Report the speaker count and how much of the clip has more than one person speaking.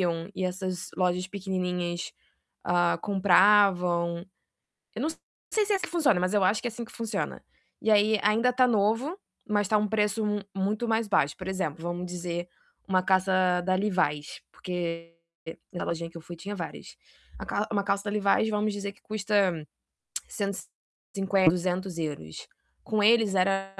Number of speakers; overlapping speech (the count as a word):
one, no overlap